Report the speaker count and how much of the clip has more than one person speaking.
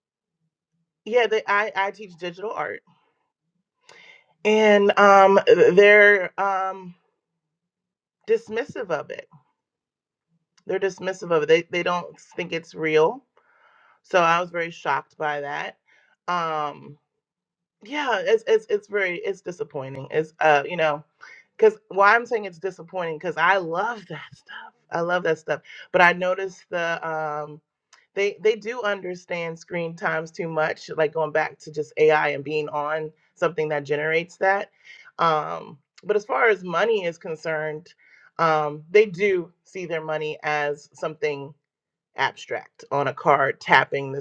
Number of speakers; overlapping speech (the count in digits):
1, no overlap